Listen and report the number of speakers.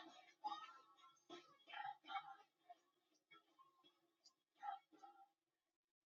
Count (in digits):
0